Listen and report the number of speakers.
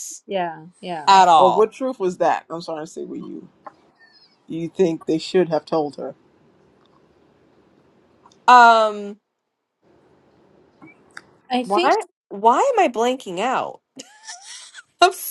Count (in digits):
3